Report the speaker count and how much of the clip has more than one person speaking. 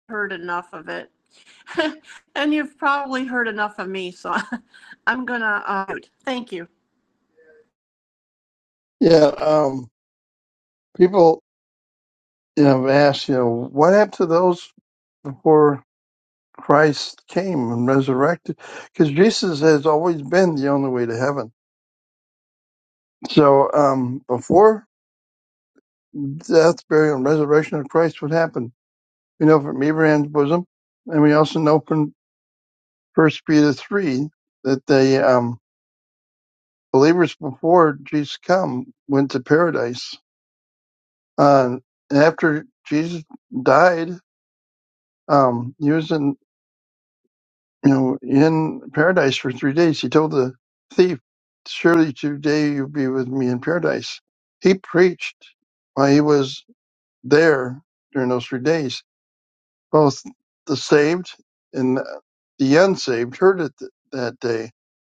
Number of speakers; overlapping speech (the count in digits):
2, no overlap